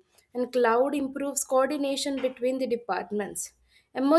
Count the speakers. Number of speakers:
1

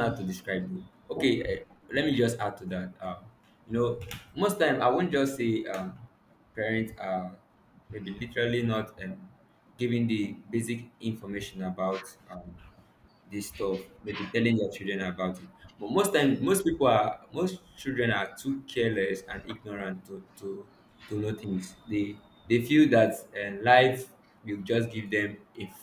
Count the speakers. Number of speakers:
1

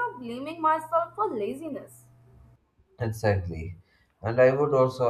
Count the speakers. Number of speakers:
2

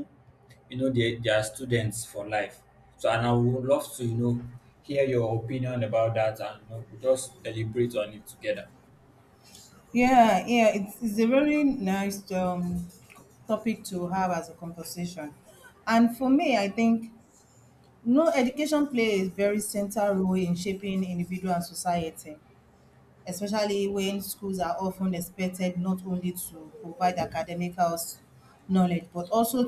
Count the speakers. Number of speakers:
2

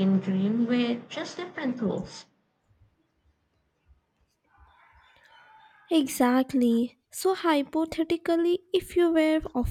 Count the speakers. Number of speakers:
2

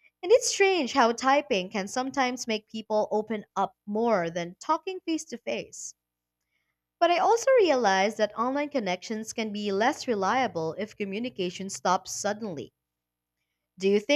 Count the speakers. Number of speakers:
1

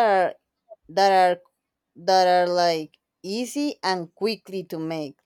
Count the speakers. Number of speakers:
1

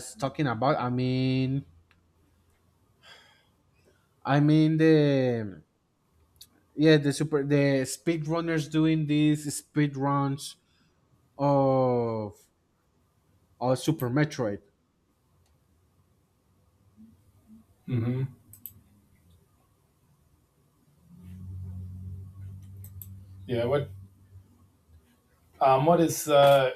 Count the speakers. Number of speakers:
2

